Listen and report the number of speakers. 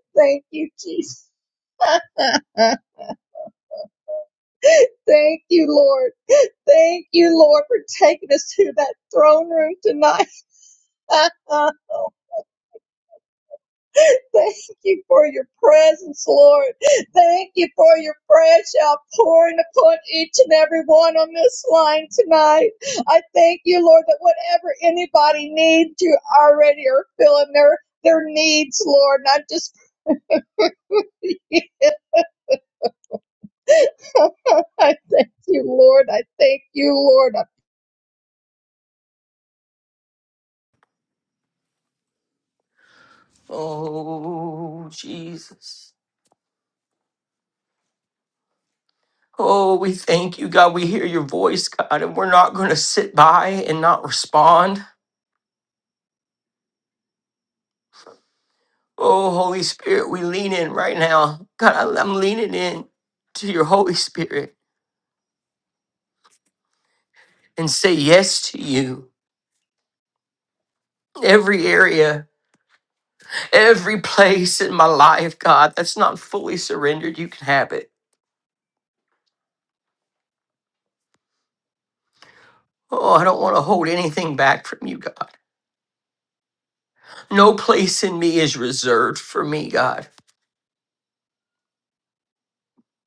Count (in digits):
2